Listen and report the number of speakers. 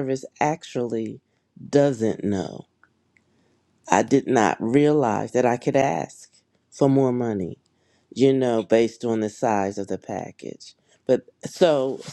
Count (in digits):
1